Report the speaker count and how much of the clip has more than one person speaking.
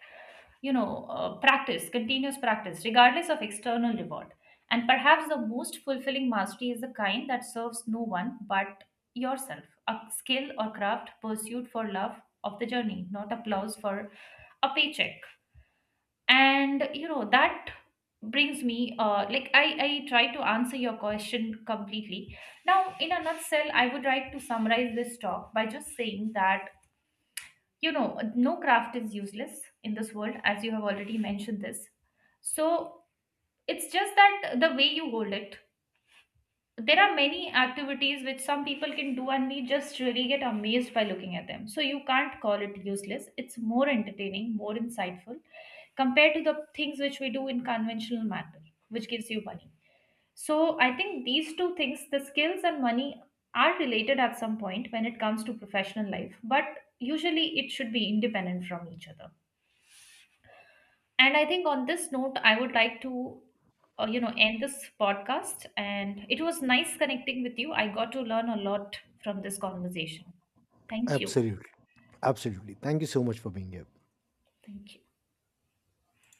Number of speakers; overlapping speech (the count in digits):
2, under 1%